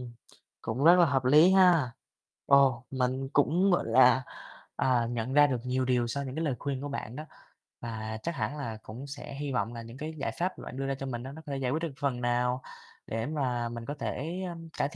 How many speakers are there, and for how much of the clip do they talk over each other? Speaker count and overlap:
1, no overlap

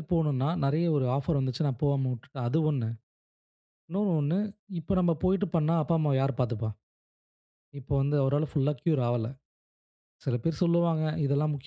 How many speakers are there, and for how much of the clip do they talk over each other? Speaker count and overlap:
1, no overlap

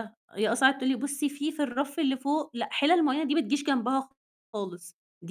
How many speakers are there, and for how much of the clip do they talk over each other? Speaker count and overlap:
1, no overlap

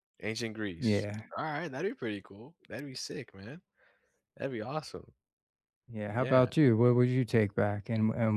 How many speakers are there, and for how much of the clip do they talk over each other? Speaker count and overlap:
2, about 9%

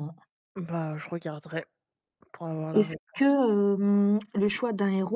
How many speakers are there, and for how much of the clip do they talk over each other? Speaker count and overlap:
2, about 5%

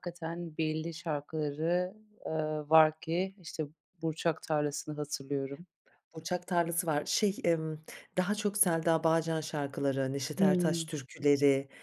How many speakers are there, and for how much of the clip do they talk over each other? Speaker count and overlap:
2, about 4%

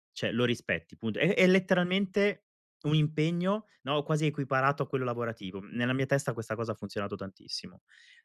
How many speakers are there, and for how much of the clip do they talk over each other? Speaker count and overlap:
1, no overlap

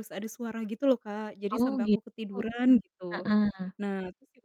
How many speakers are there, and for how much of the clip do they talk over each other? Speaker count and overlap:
2, about 15%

